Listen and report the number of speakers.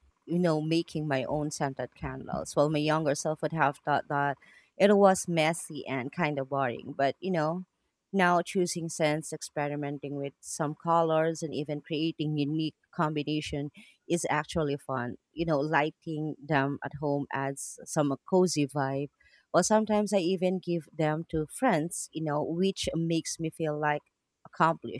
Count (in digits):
1